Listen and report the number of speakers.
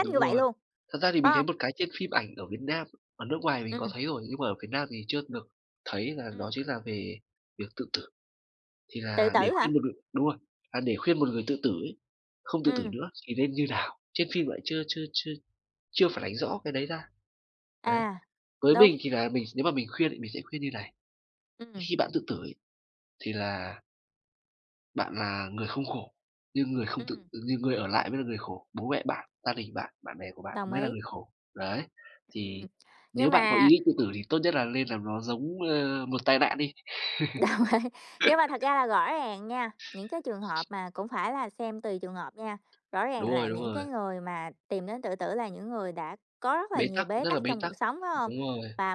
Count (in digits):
2